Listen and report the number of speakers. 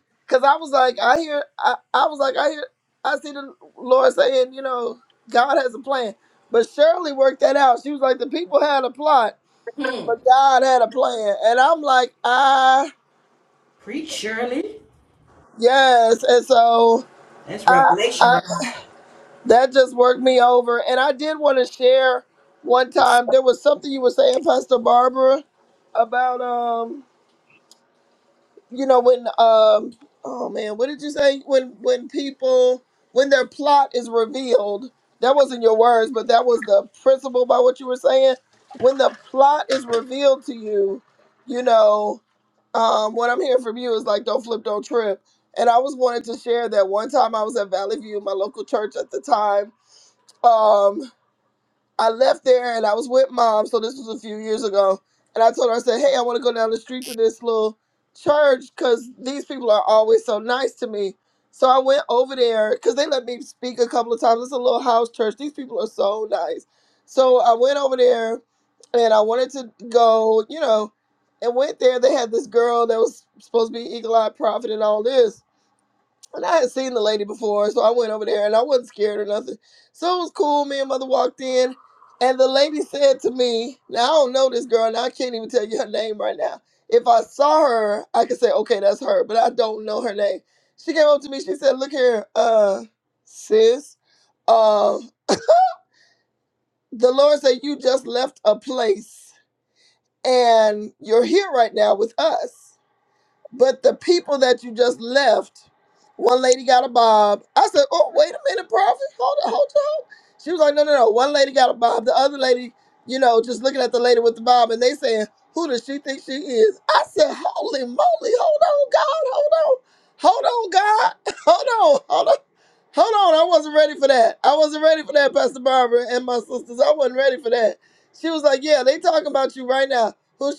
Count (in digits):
2